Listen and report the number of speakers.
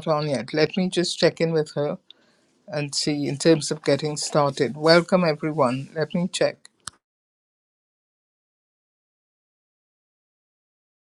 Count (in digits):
1